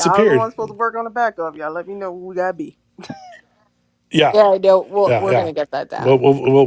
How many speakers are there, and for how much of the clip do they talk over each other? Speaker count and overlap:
three, about 18%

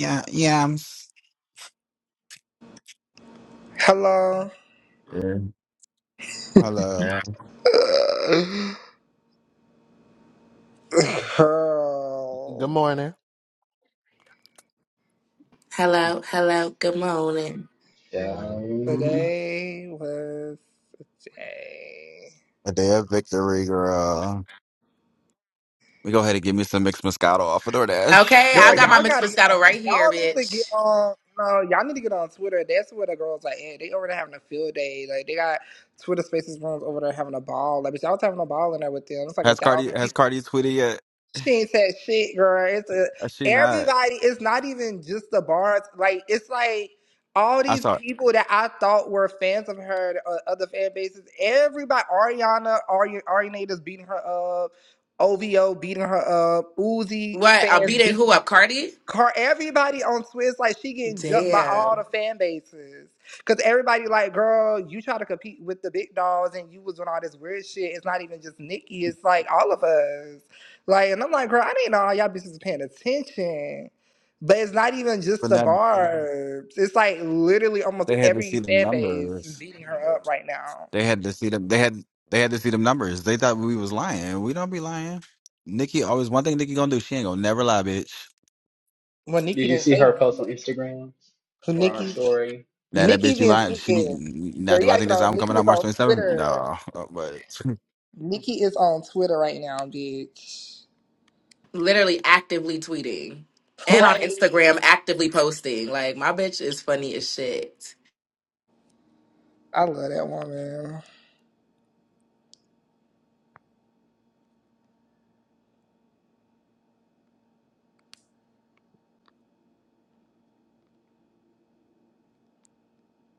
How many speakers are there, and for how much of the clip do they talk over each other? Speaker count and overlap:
five, about 10%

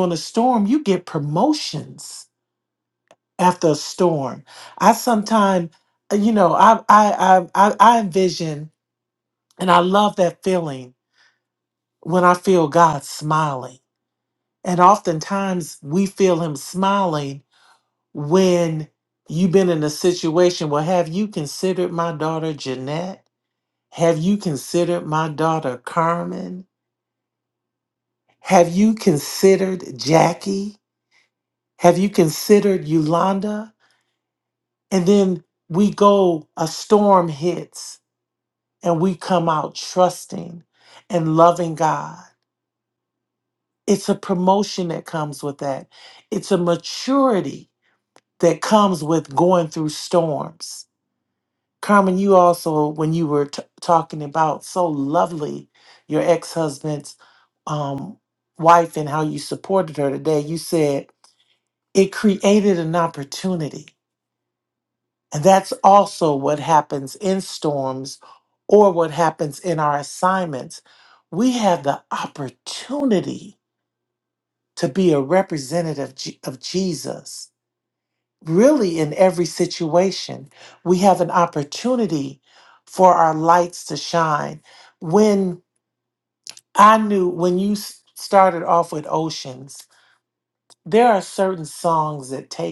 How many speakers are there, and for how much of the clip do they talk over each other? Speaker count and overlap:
one, no overlap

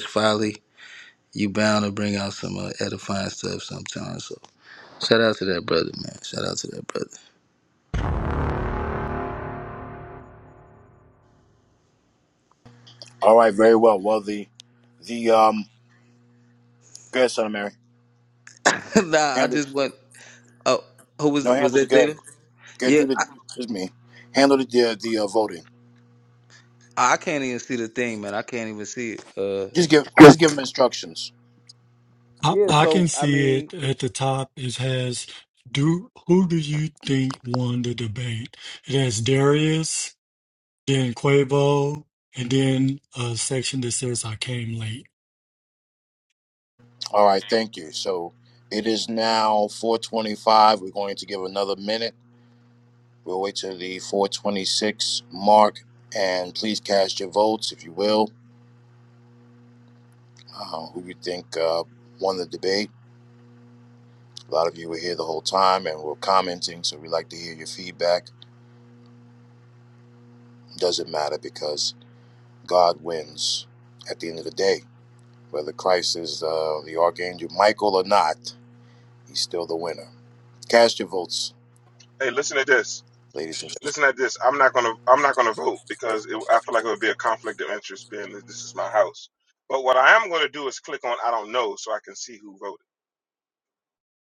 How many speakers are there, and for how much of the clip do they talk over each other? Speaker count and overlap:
four, about 3%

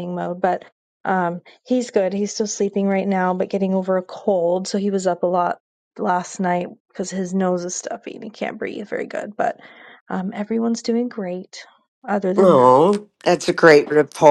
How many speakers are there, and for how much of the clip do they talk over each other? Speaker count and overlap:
two, about 2%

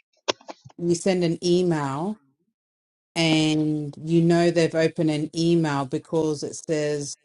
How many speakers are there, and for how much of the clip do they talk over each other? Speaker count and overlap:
one, no overlap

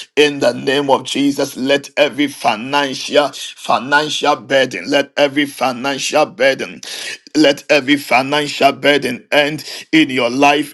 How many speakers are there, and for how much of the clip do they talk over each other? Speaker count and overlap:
one, no overlap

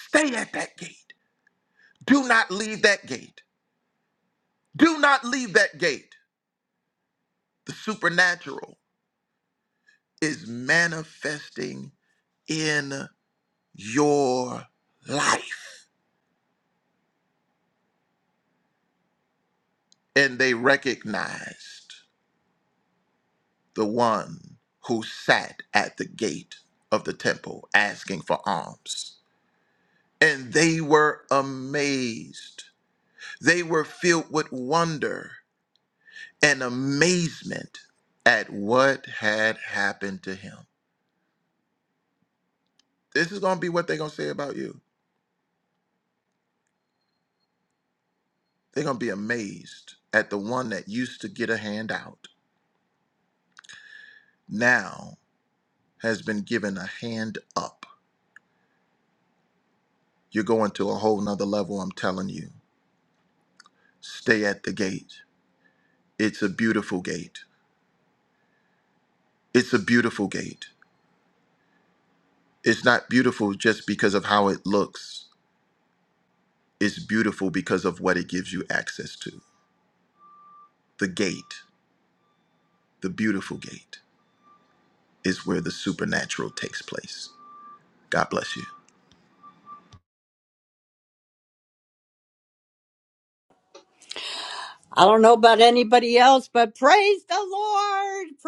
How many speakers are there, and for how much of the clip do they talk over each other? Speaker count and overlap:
two, no overlap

